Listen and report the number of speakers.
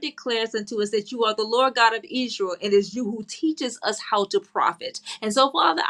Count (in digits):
1